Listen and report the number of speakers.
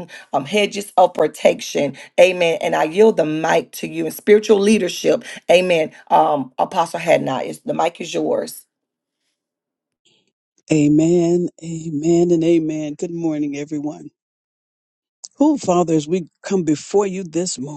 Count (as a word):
two